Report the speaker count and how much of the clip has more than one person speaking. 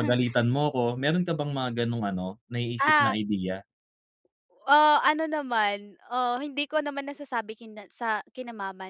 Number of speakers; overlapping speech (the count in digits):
2, about 4%